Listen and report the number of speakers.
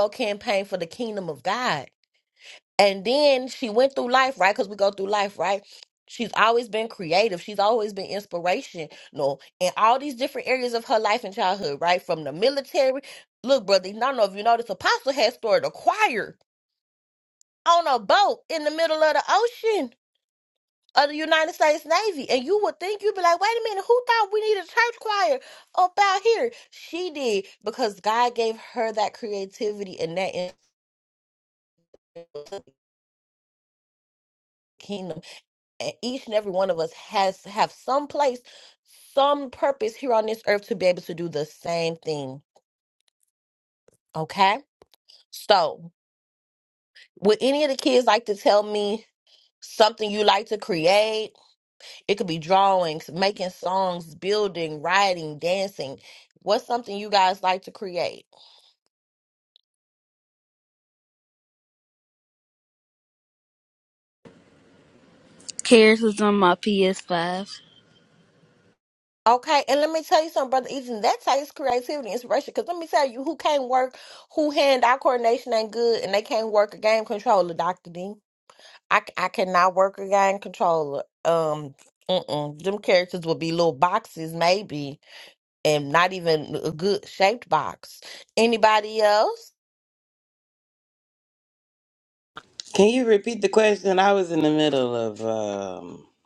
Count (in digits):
3